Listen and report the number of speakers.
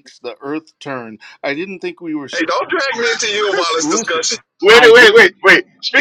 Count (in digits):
3